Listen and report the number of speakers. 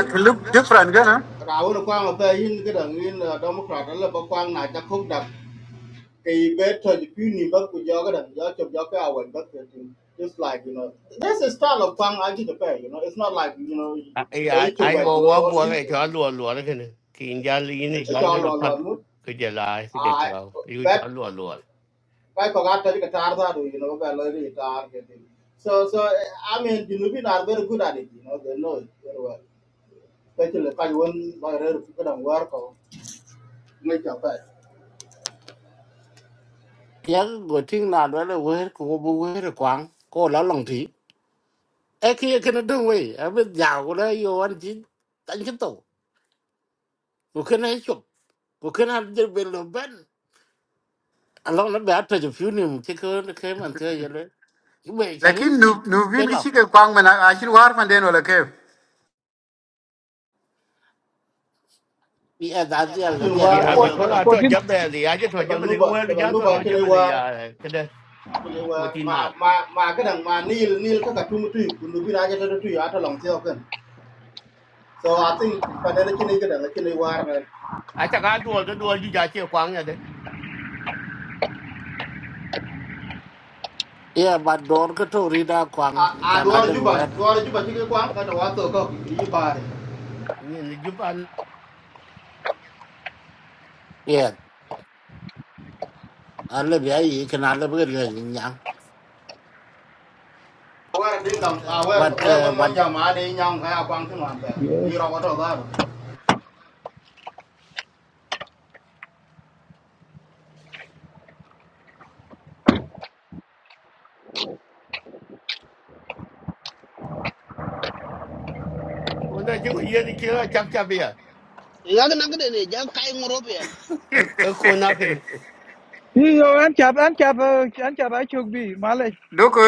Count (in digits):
6